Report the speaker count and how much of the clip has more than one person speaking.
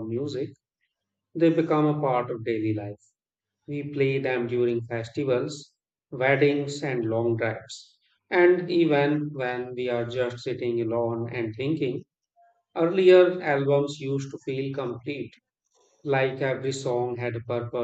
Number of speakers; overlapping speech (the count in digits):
1, no overlap